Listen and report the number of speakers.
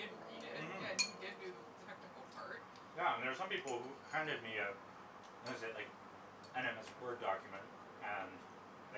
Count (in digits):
2